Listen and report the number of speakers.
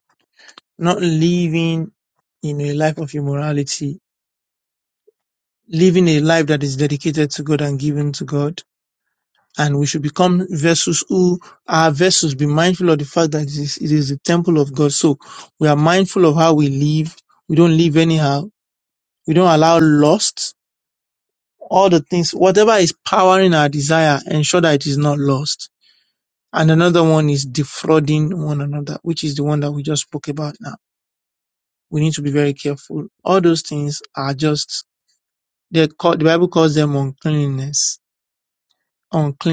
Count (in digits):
1